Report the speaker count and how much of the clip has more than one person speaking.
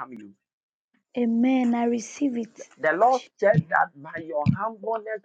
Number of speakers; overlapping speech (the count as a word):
two, about 10%